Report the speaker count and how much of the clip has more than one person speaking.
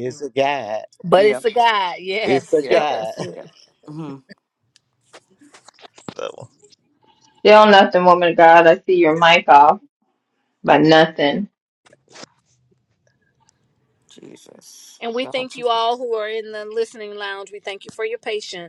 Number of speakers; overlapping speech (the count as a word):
four, about 8%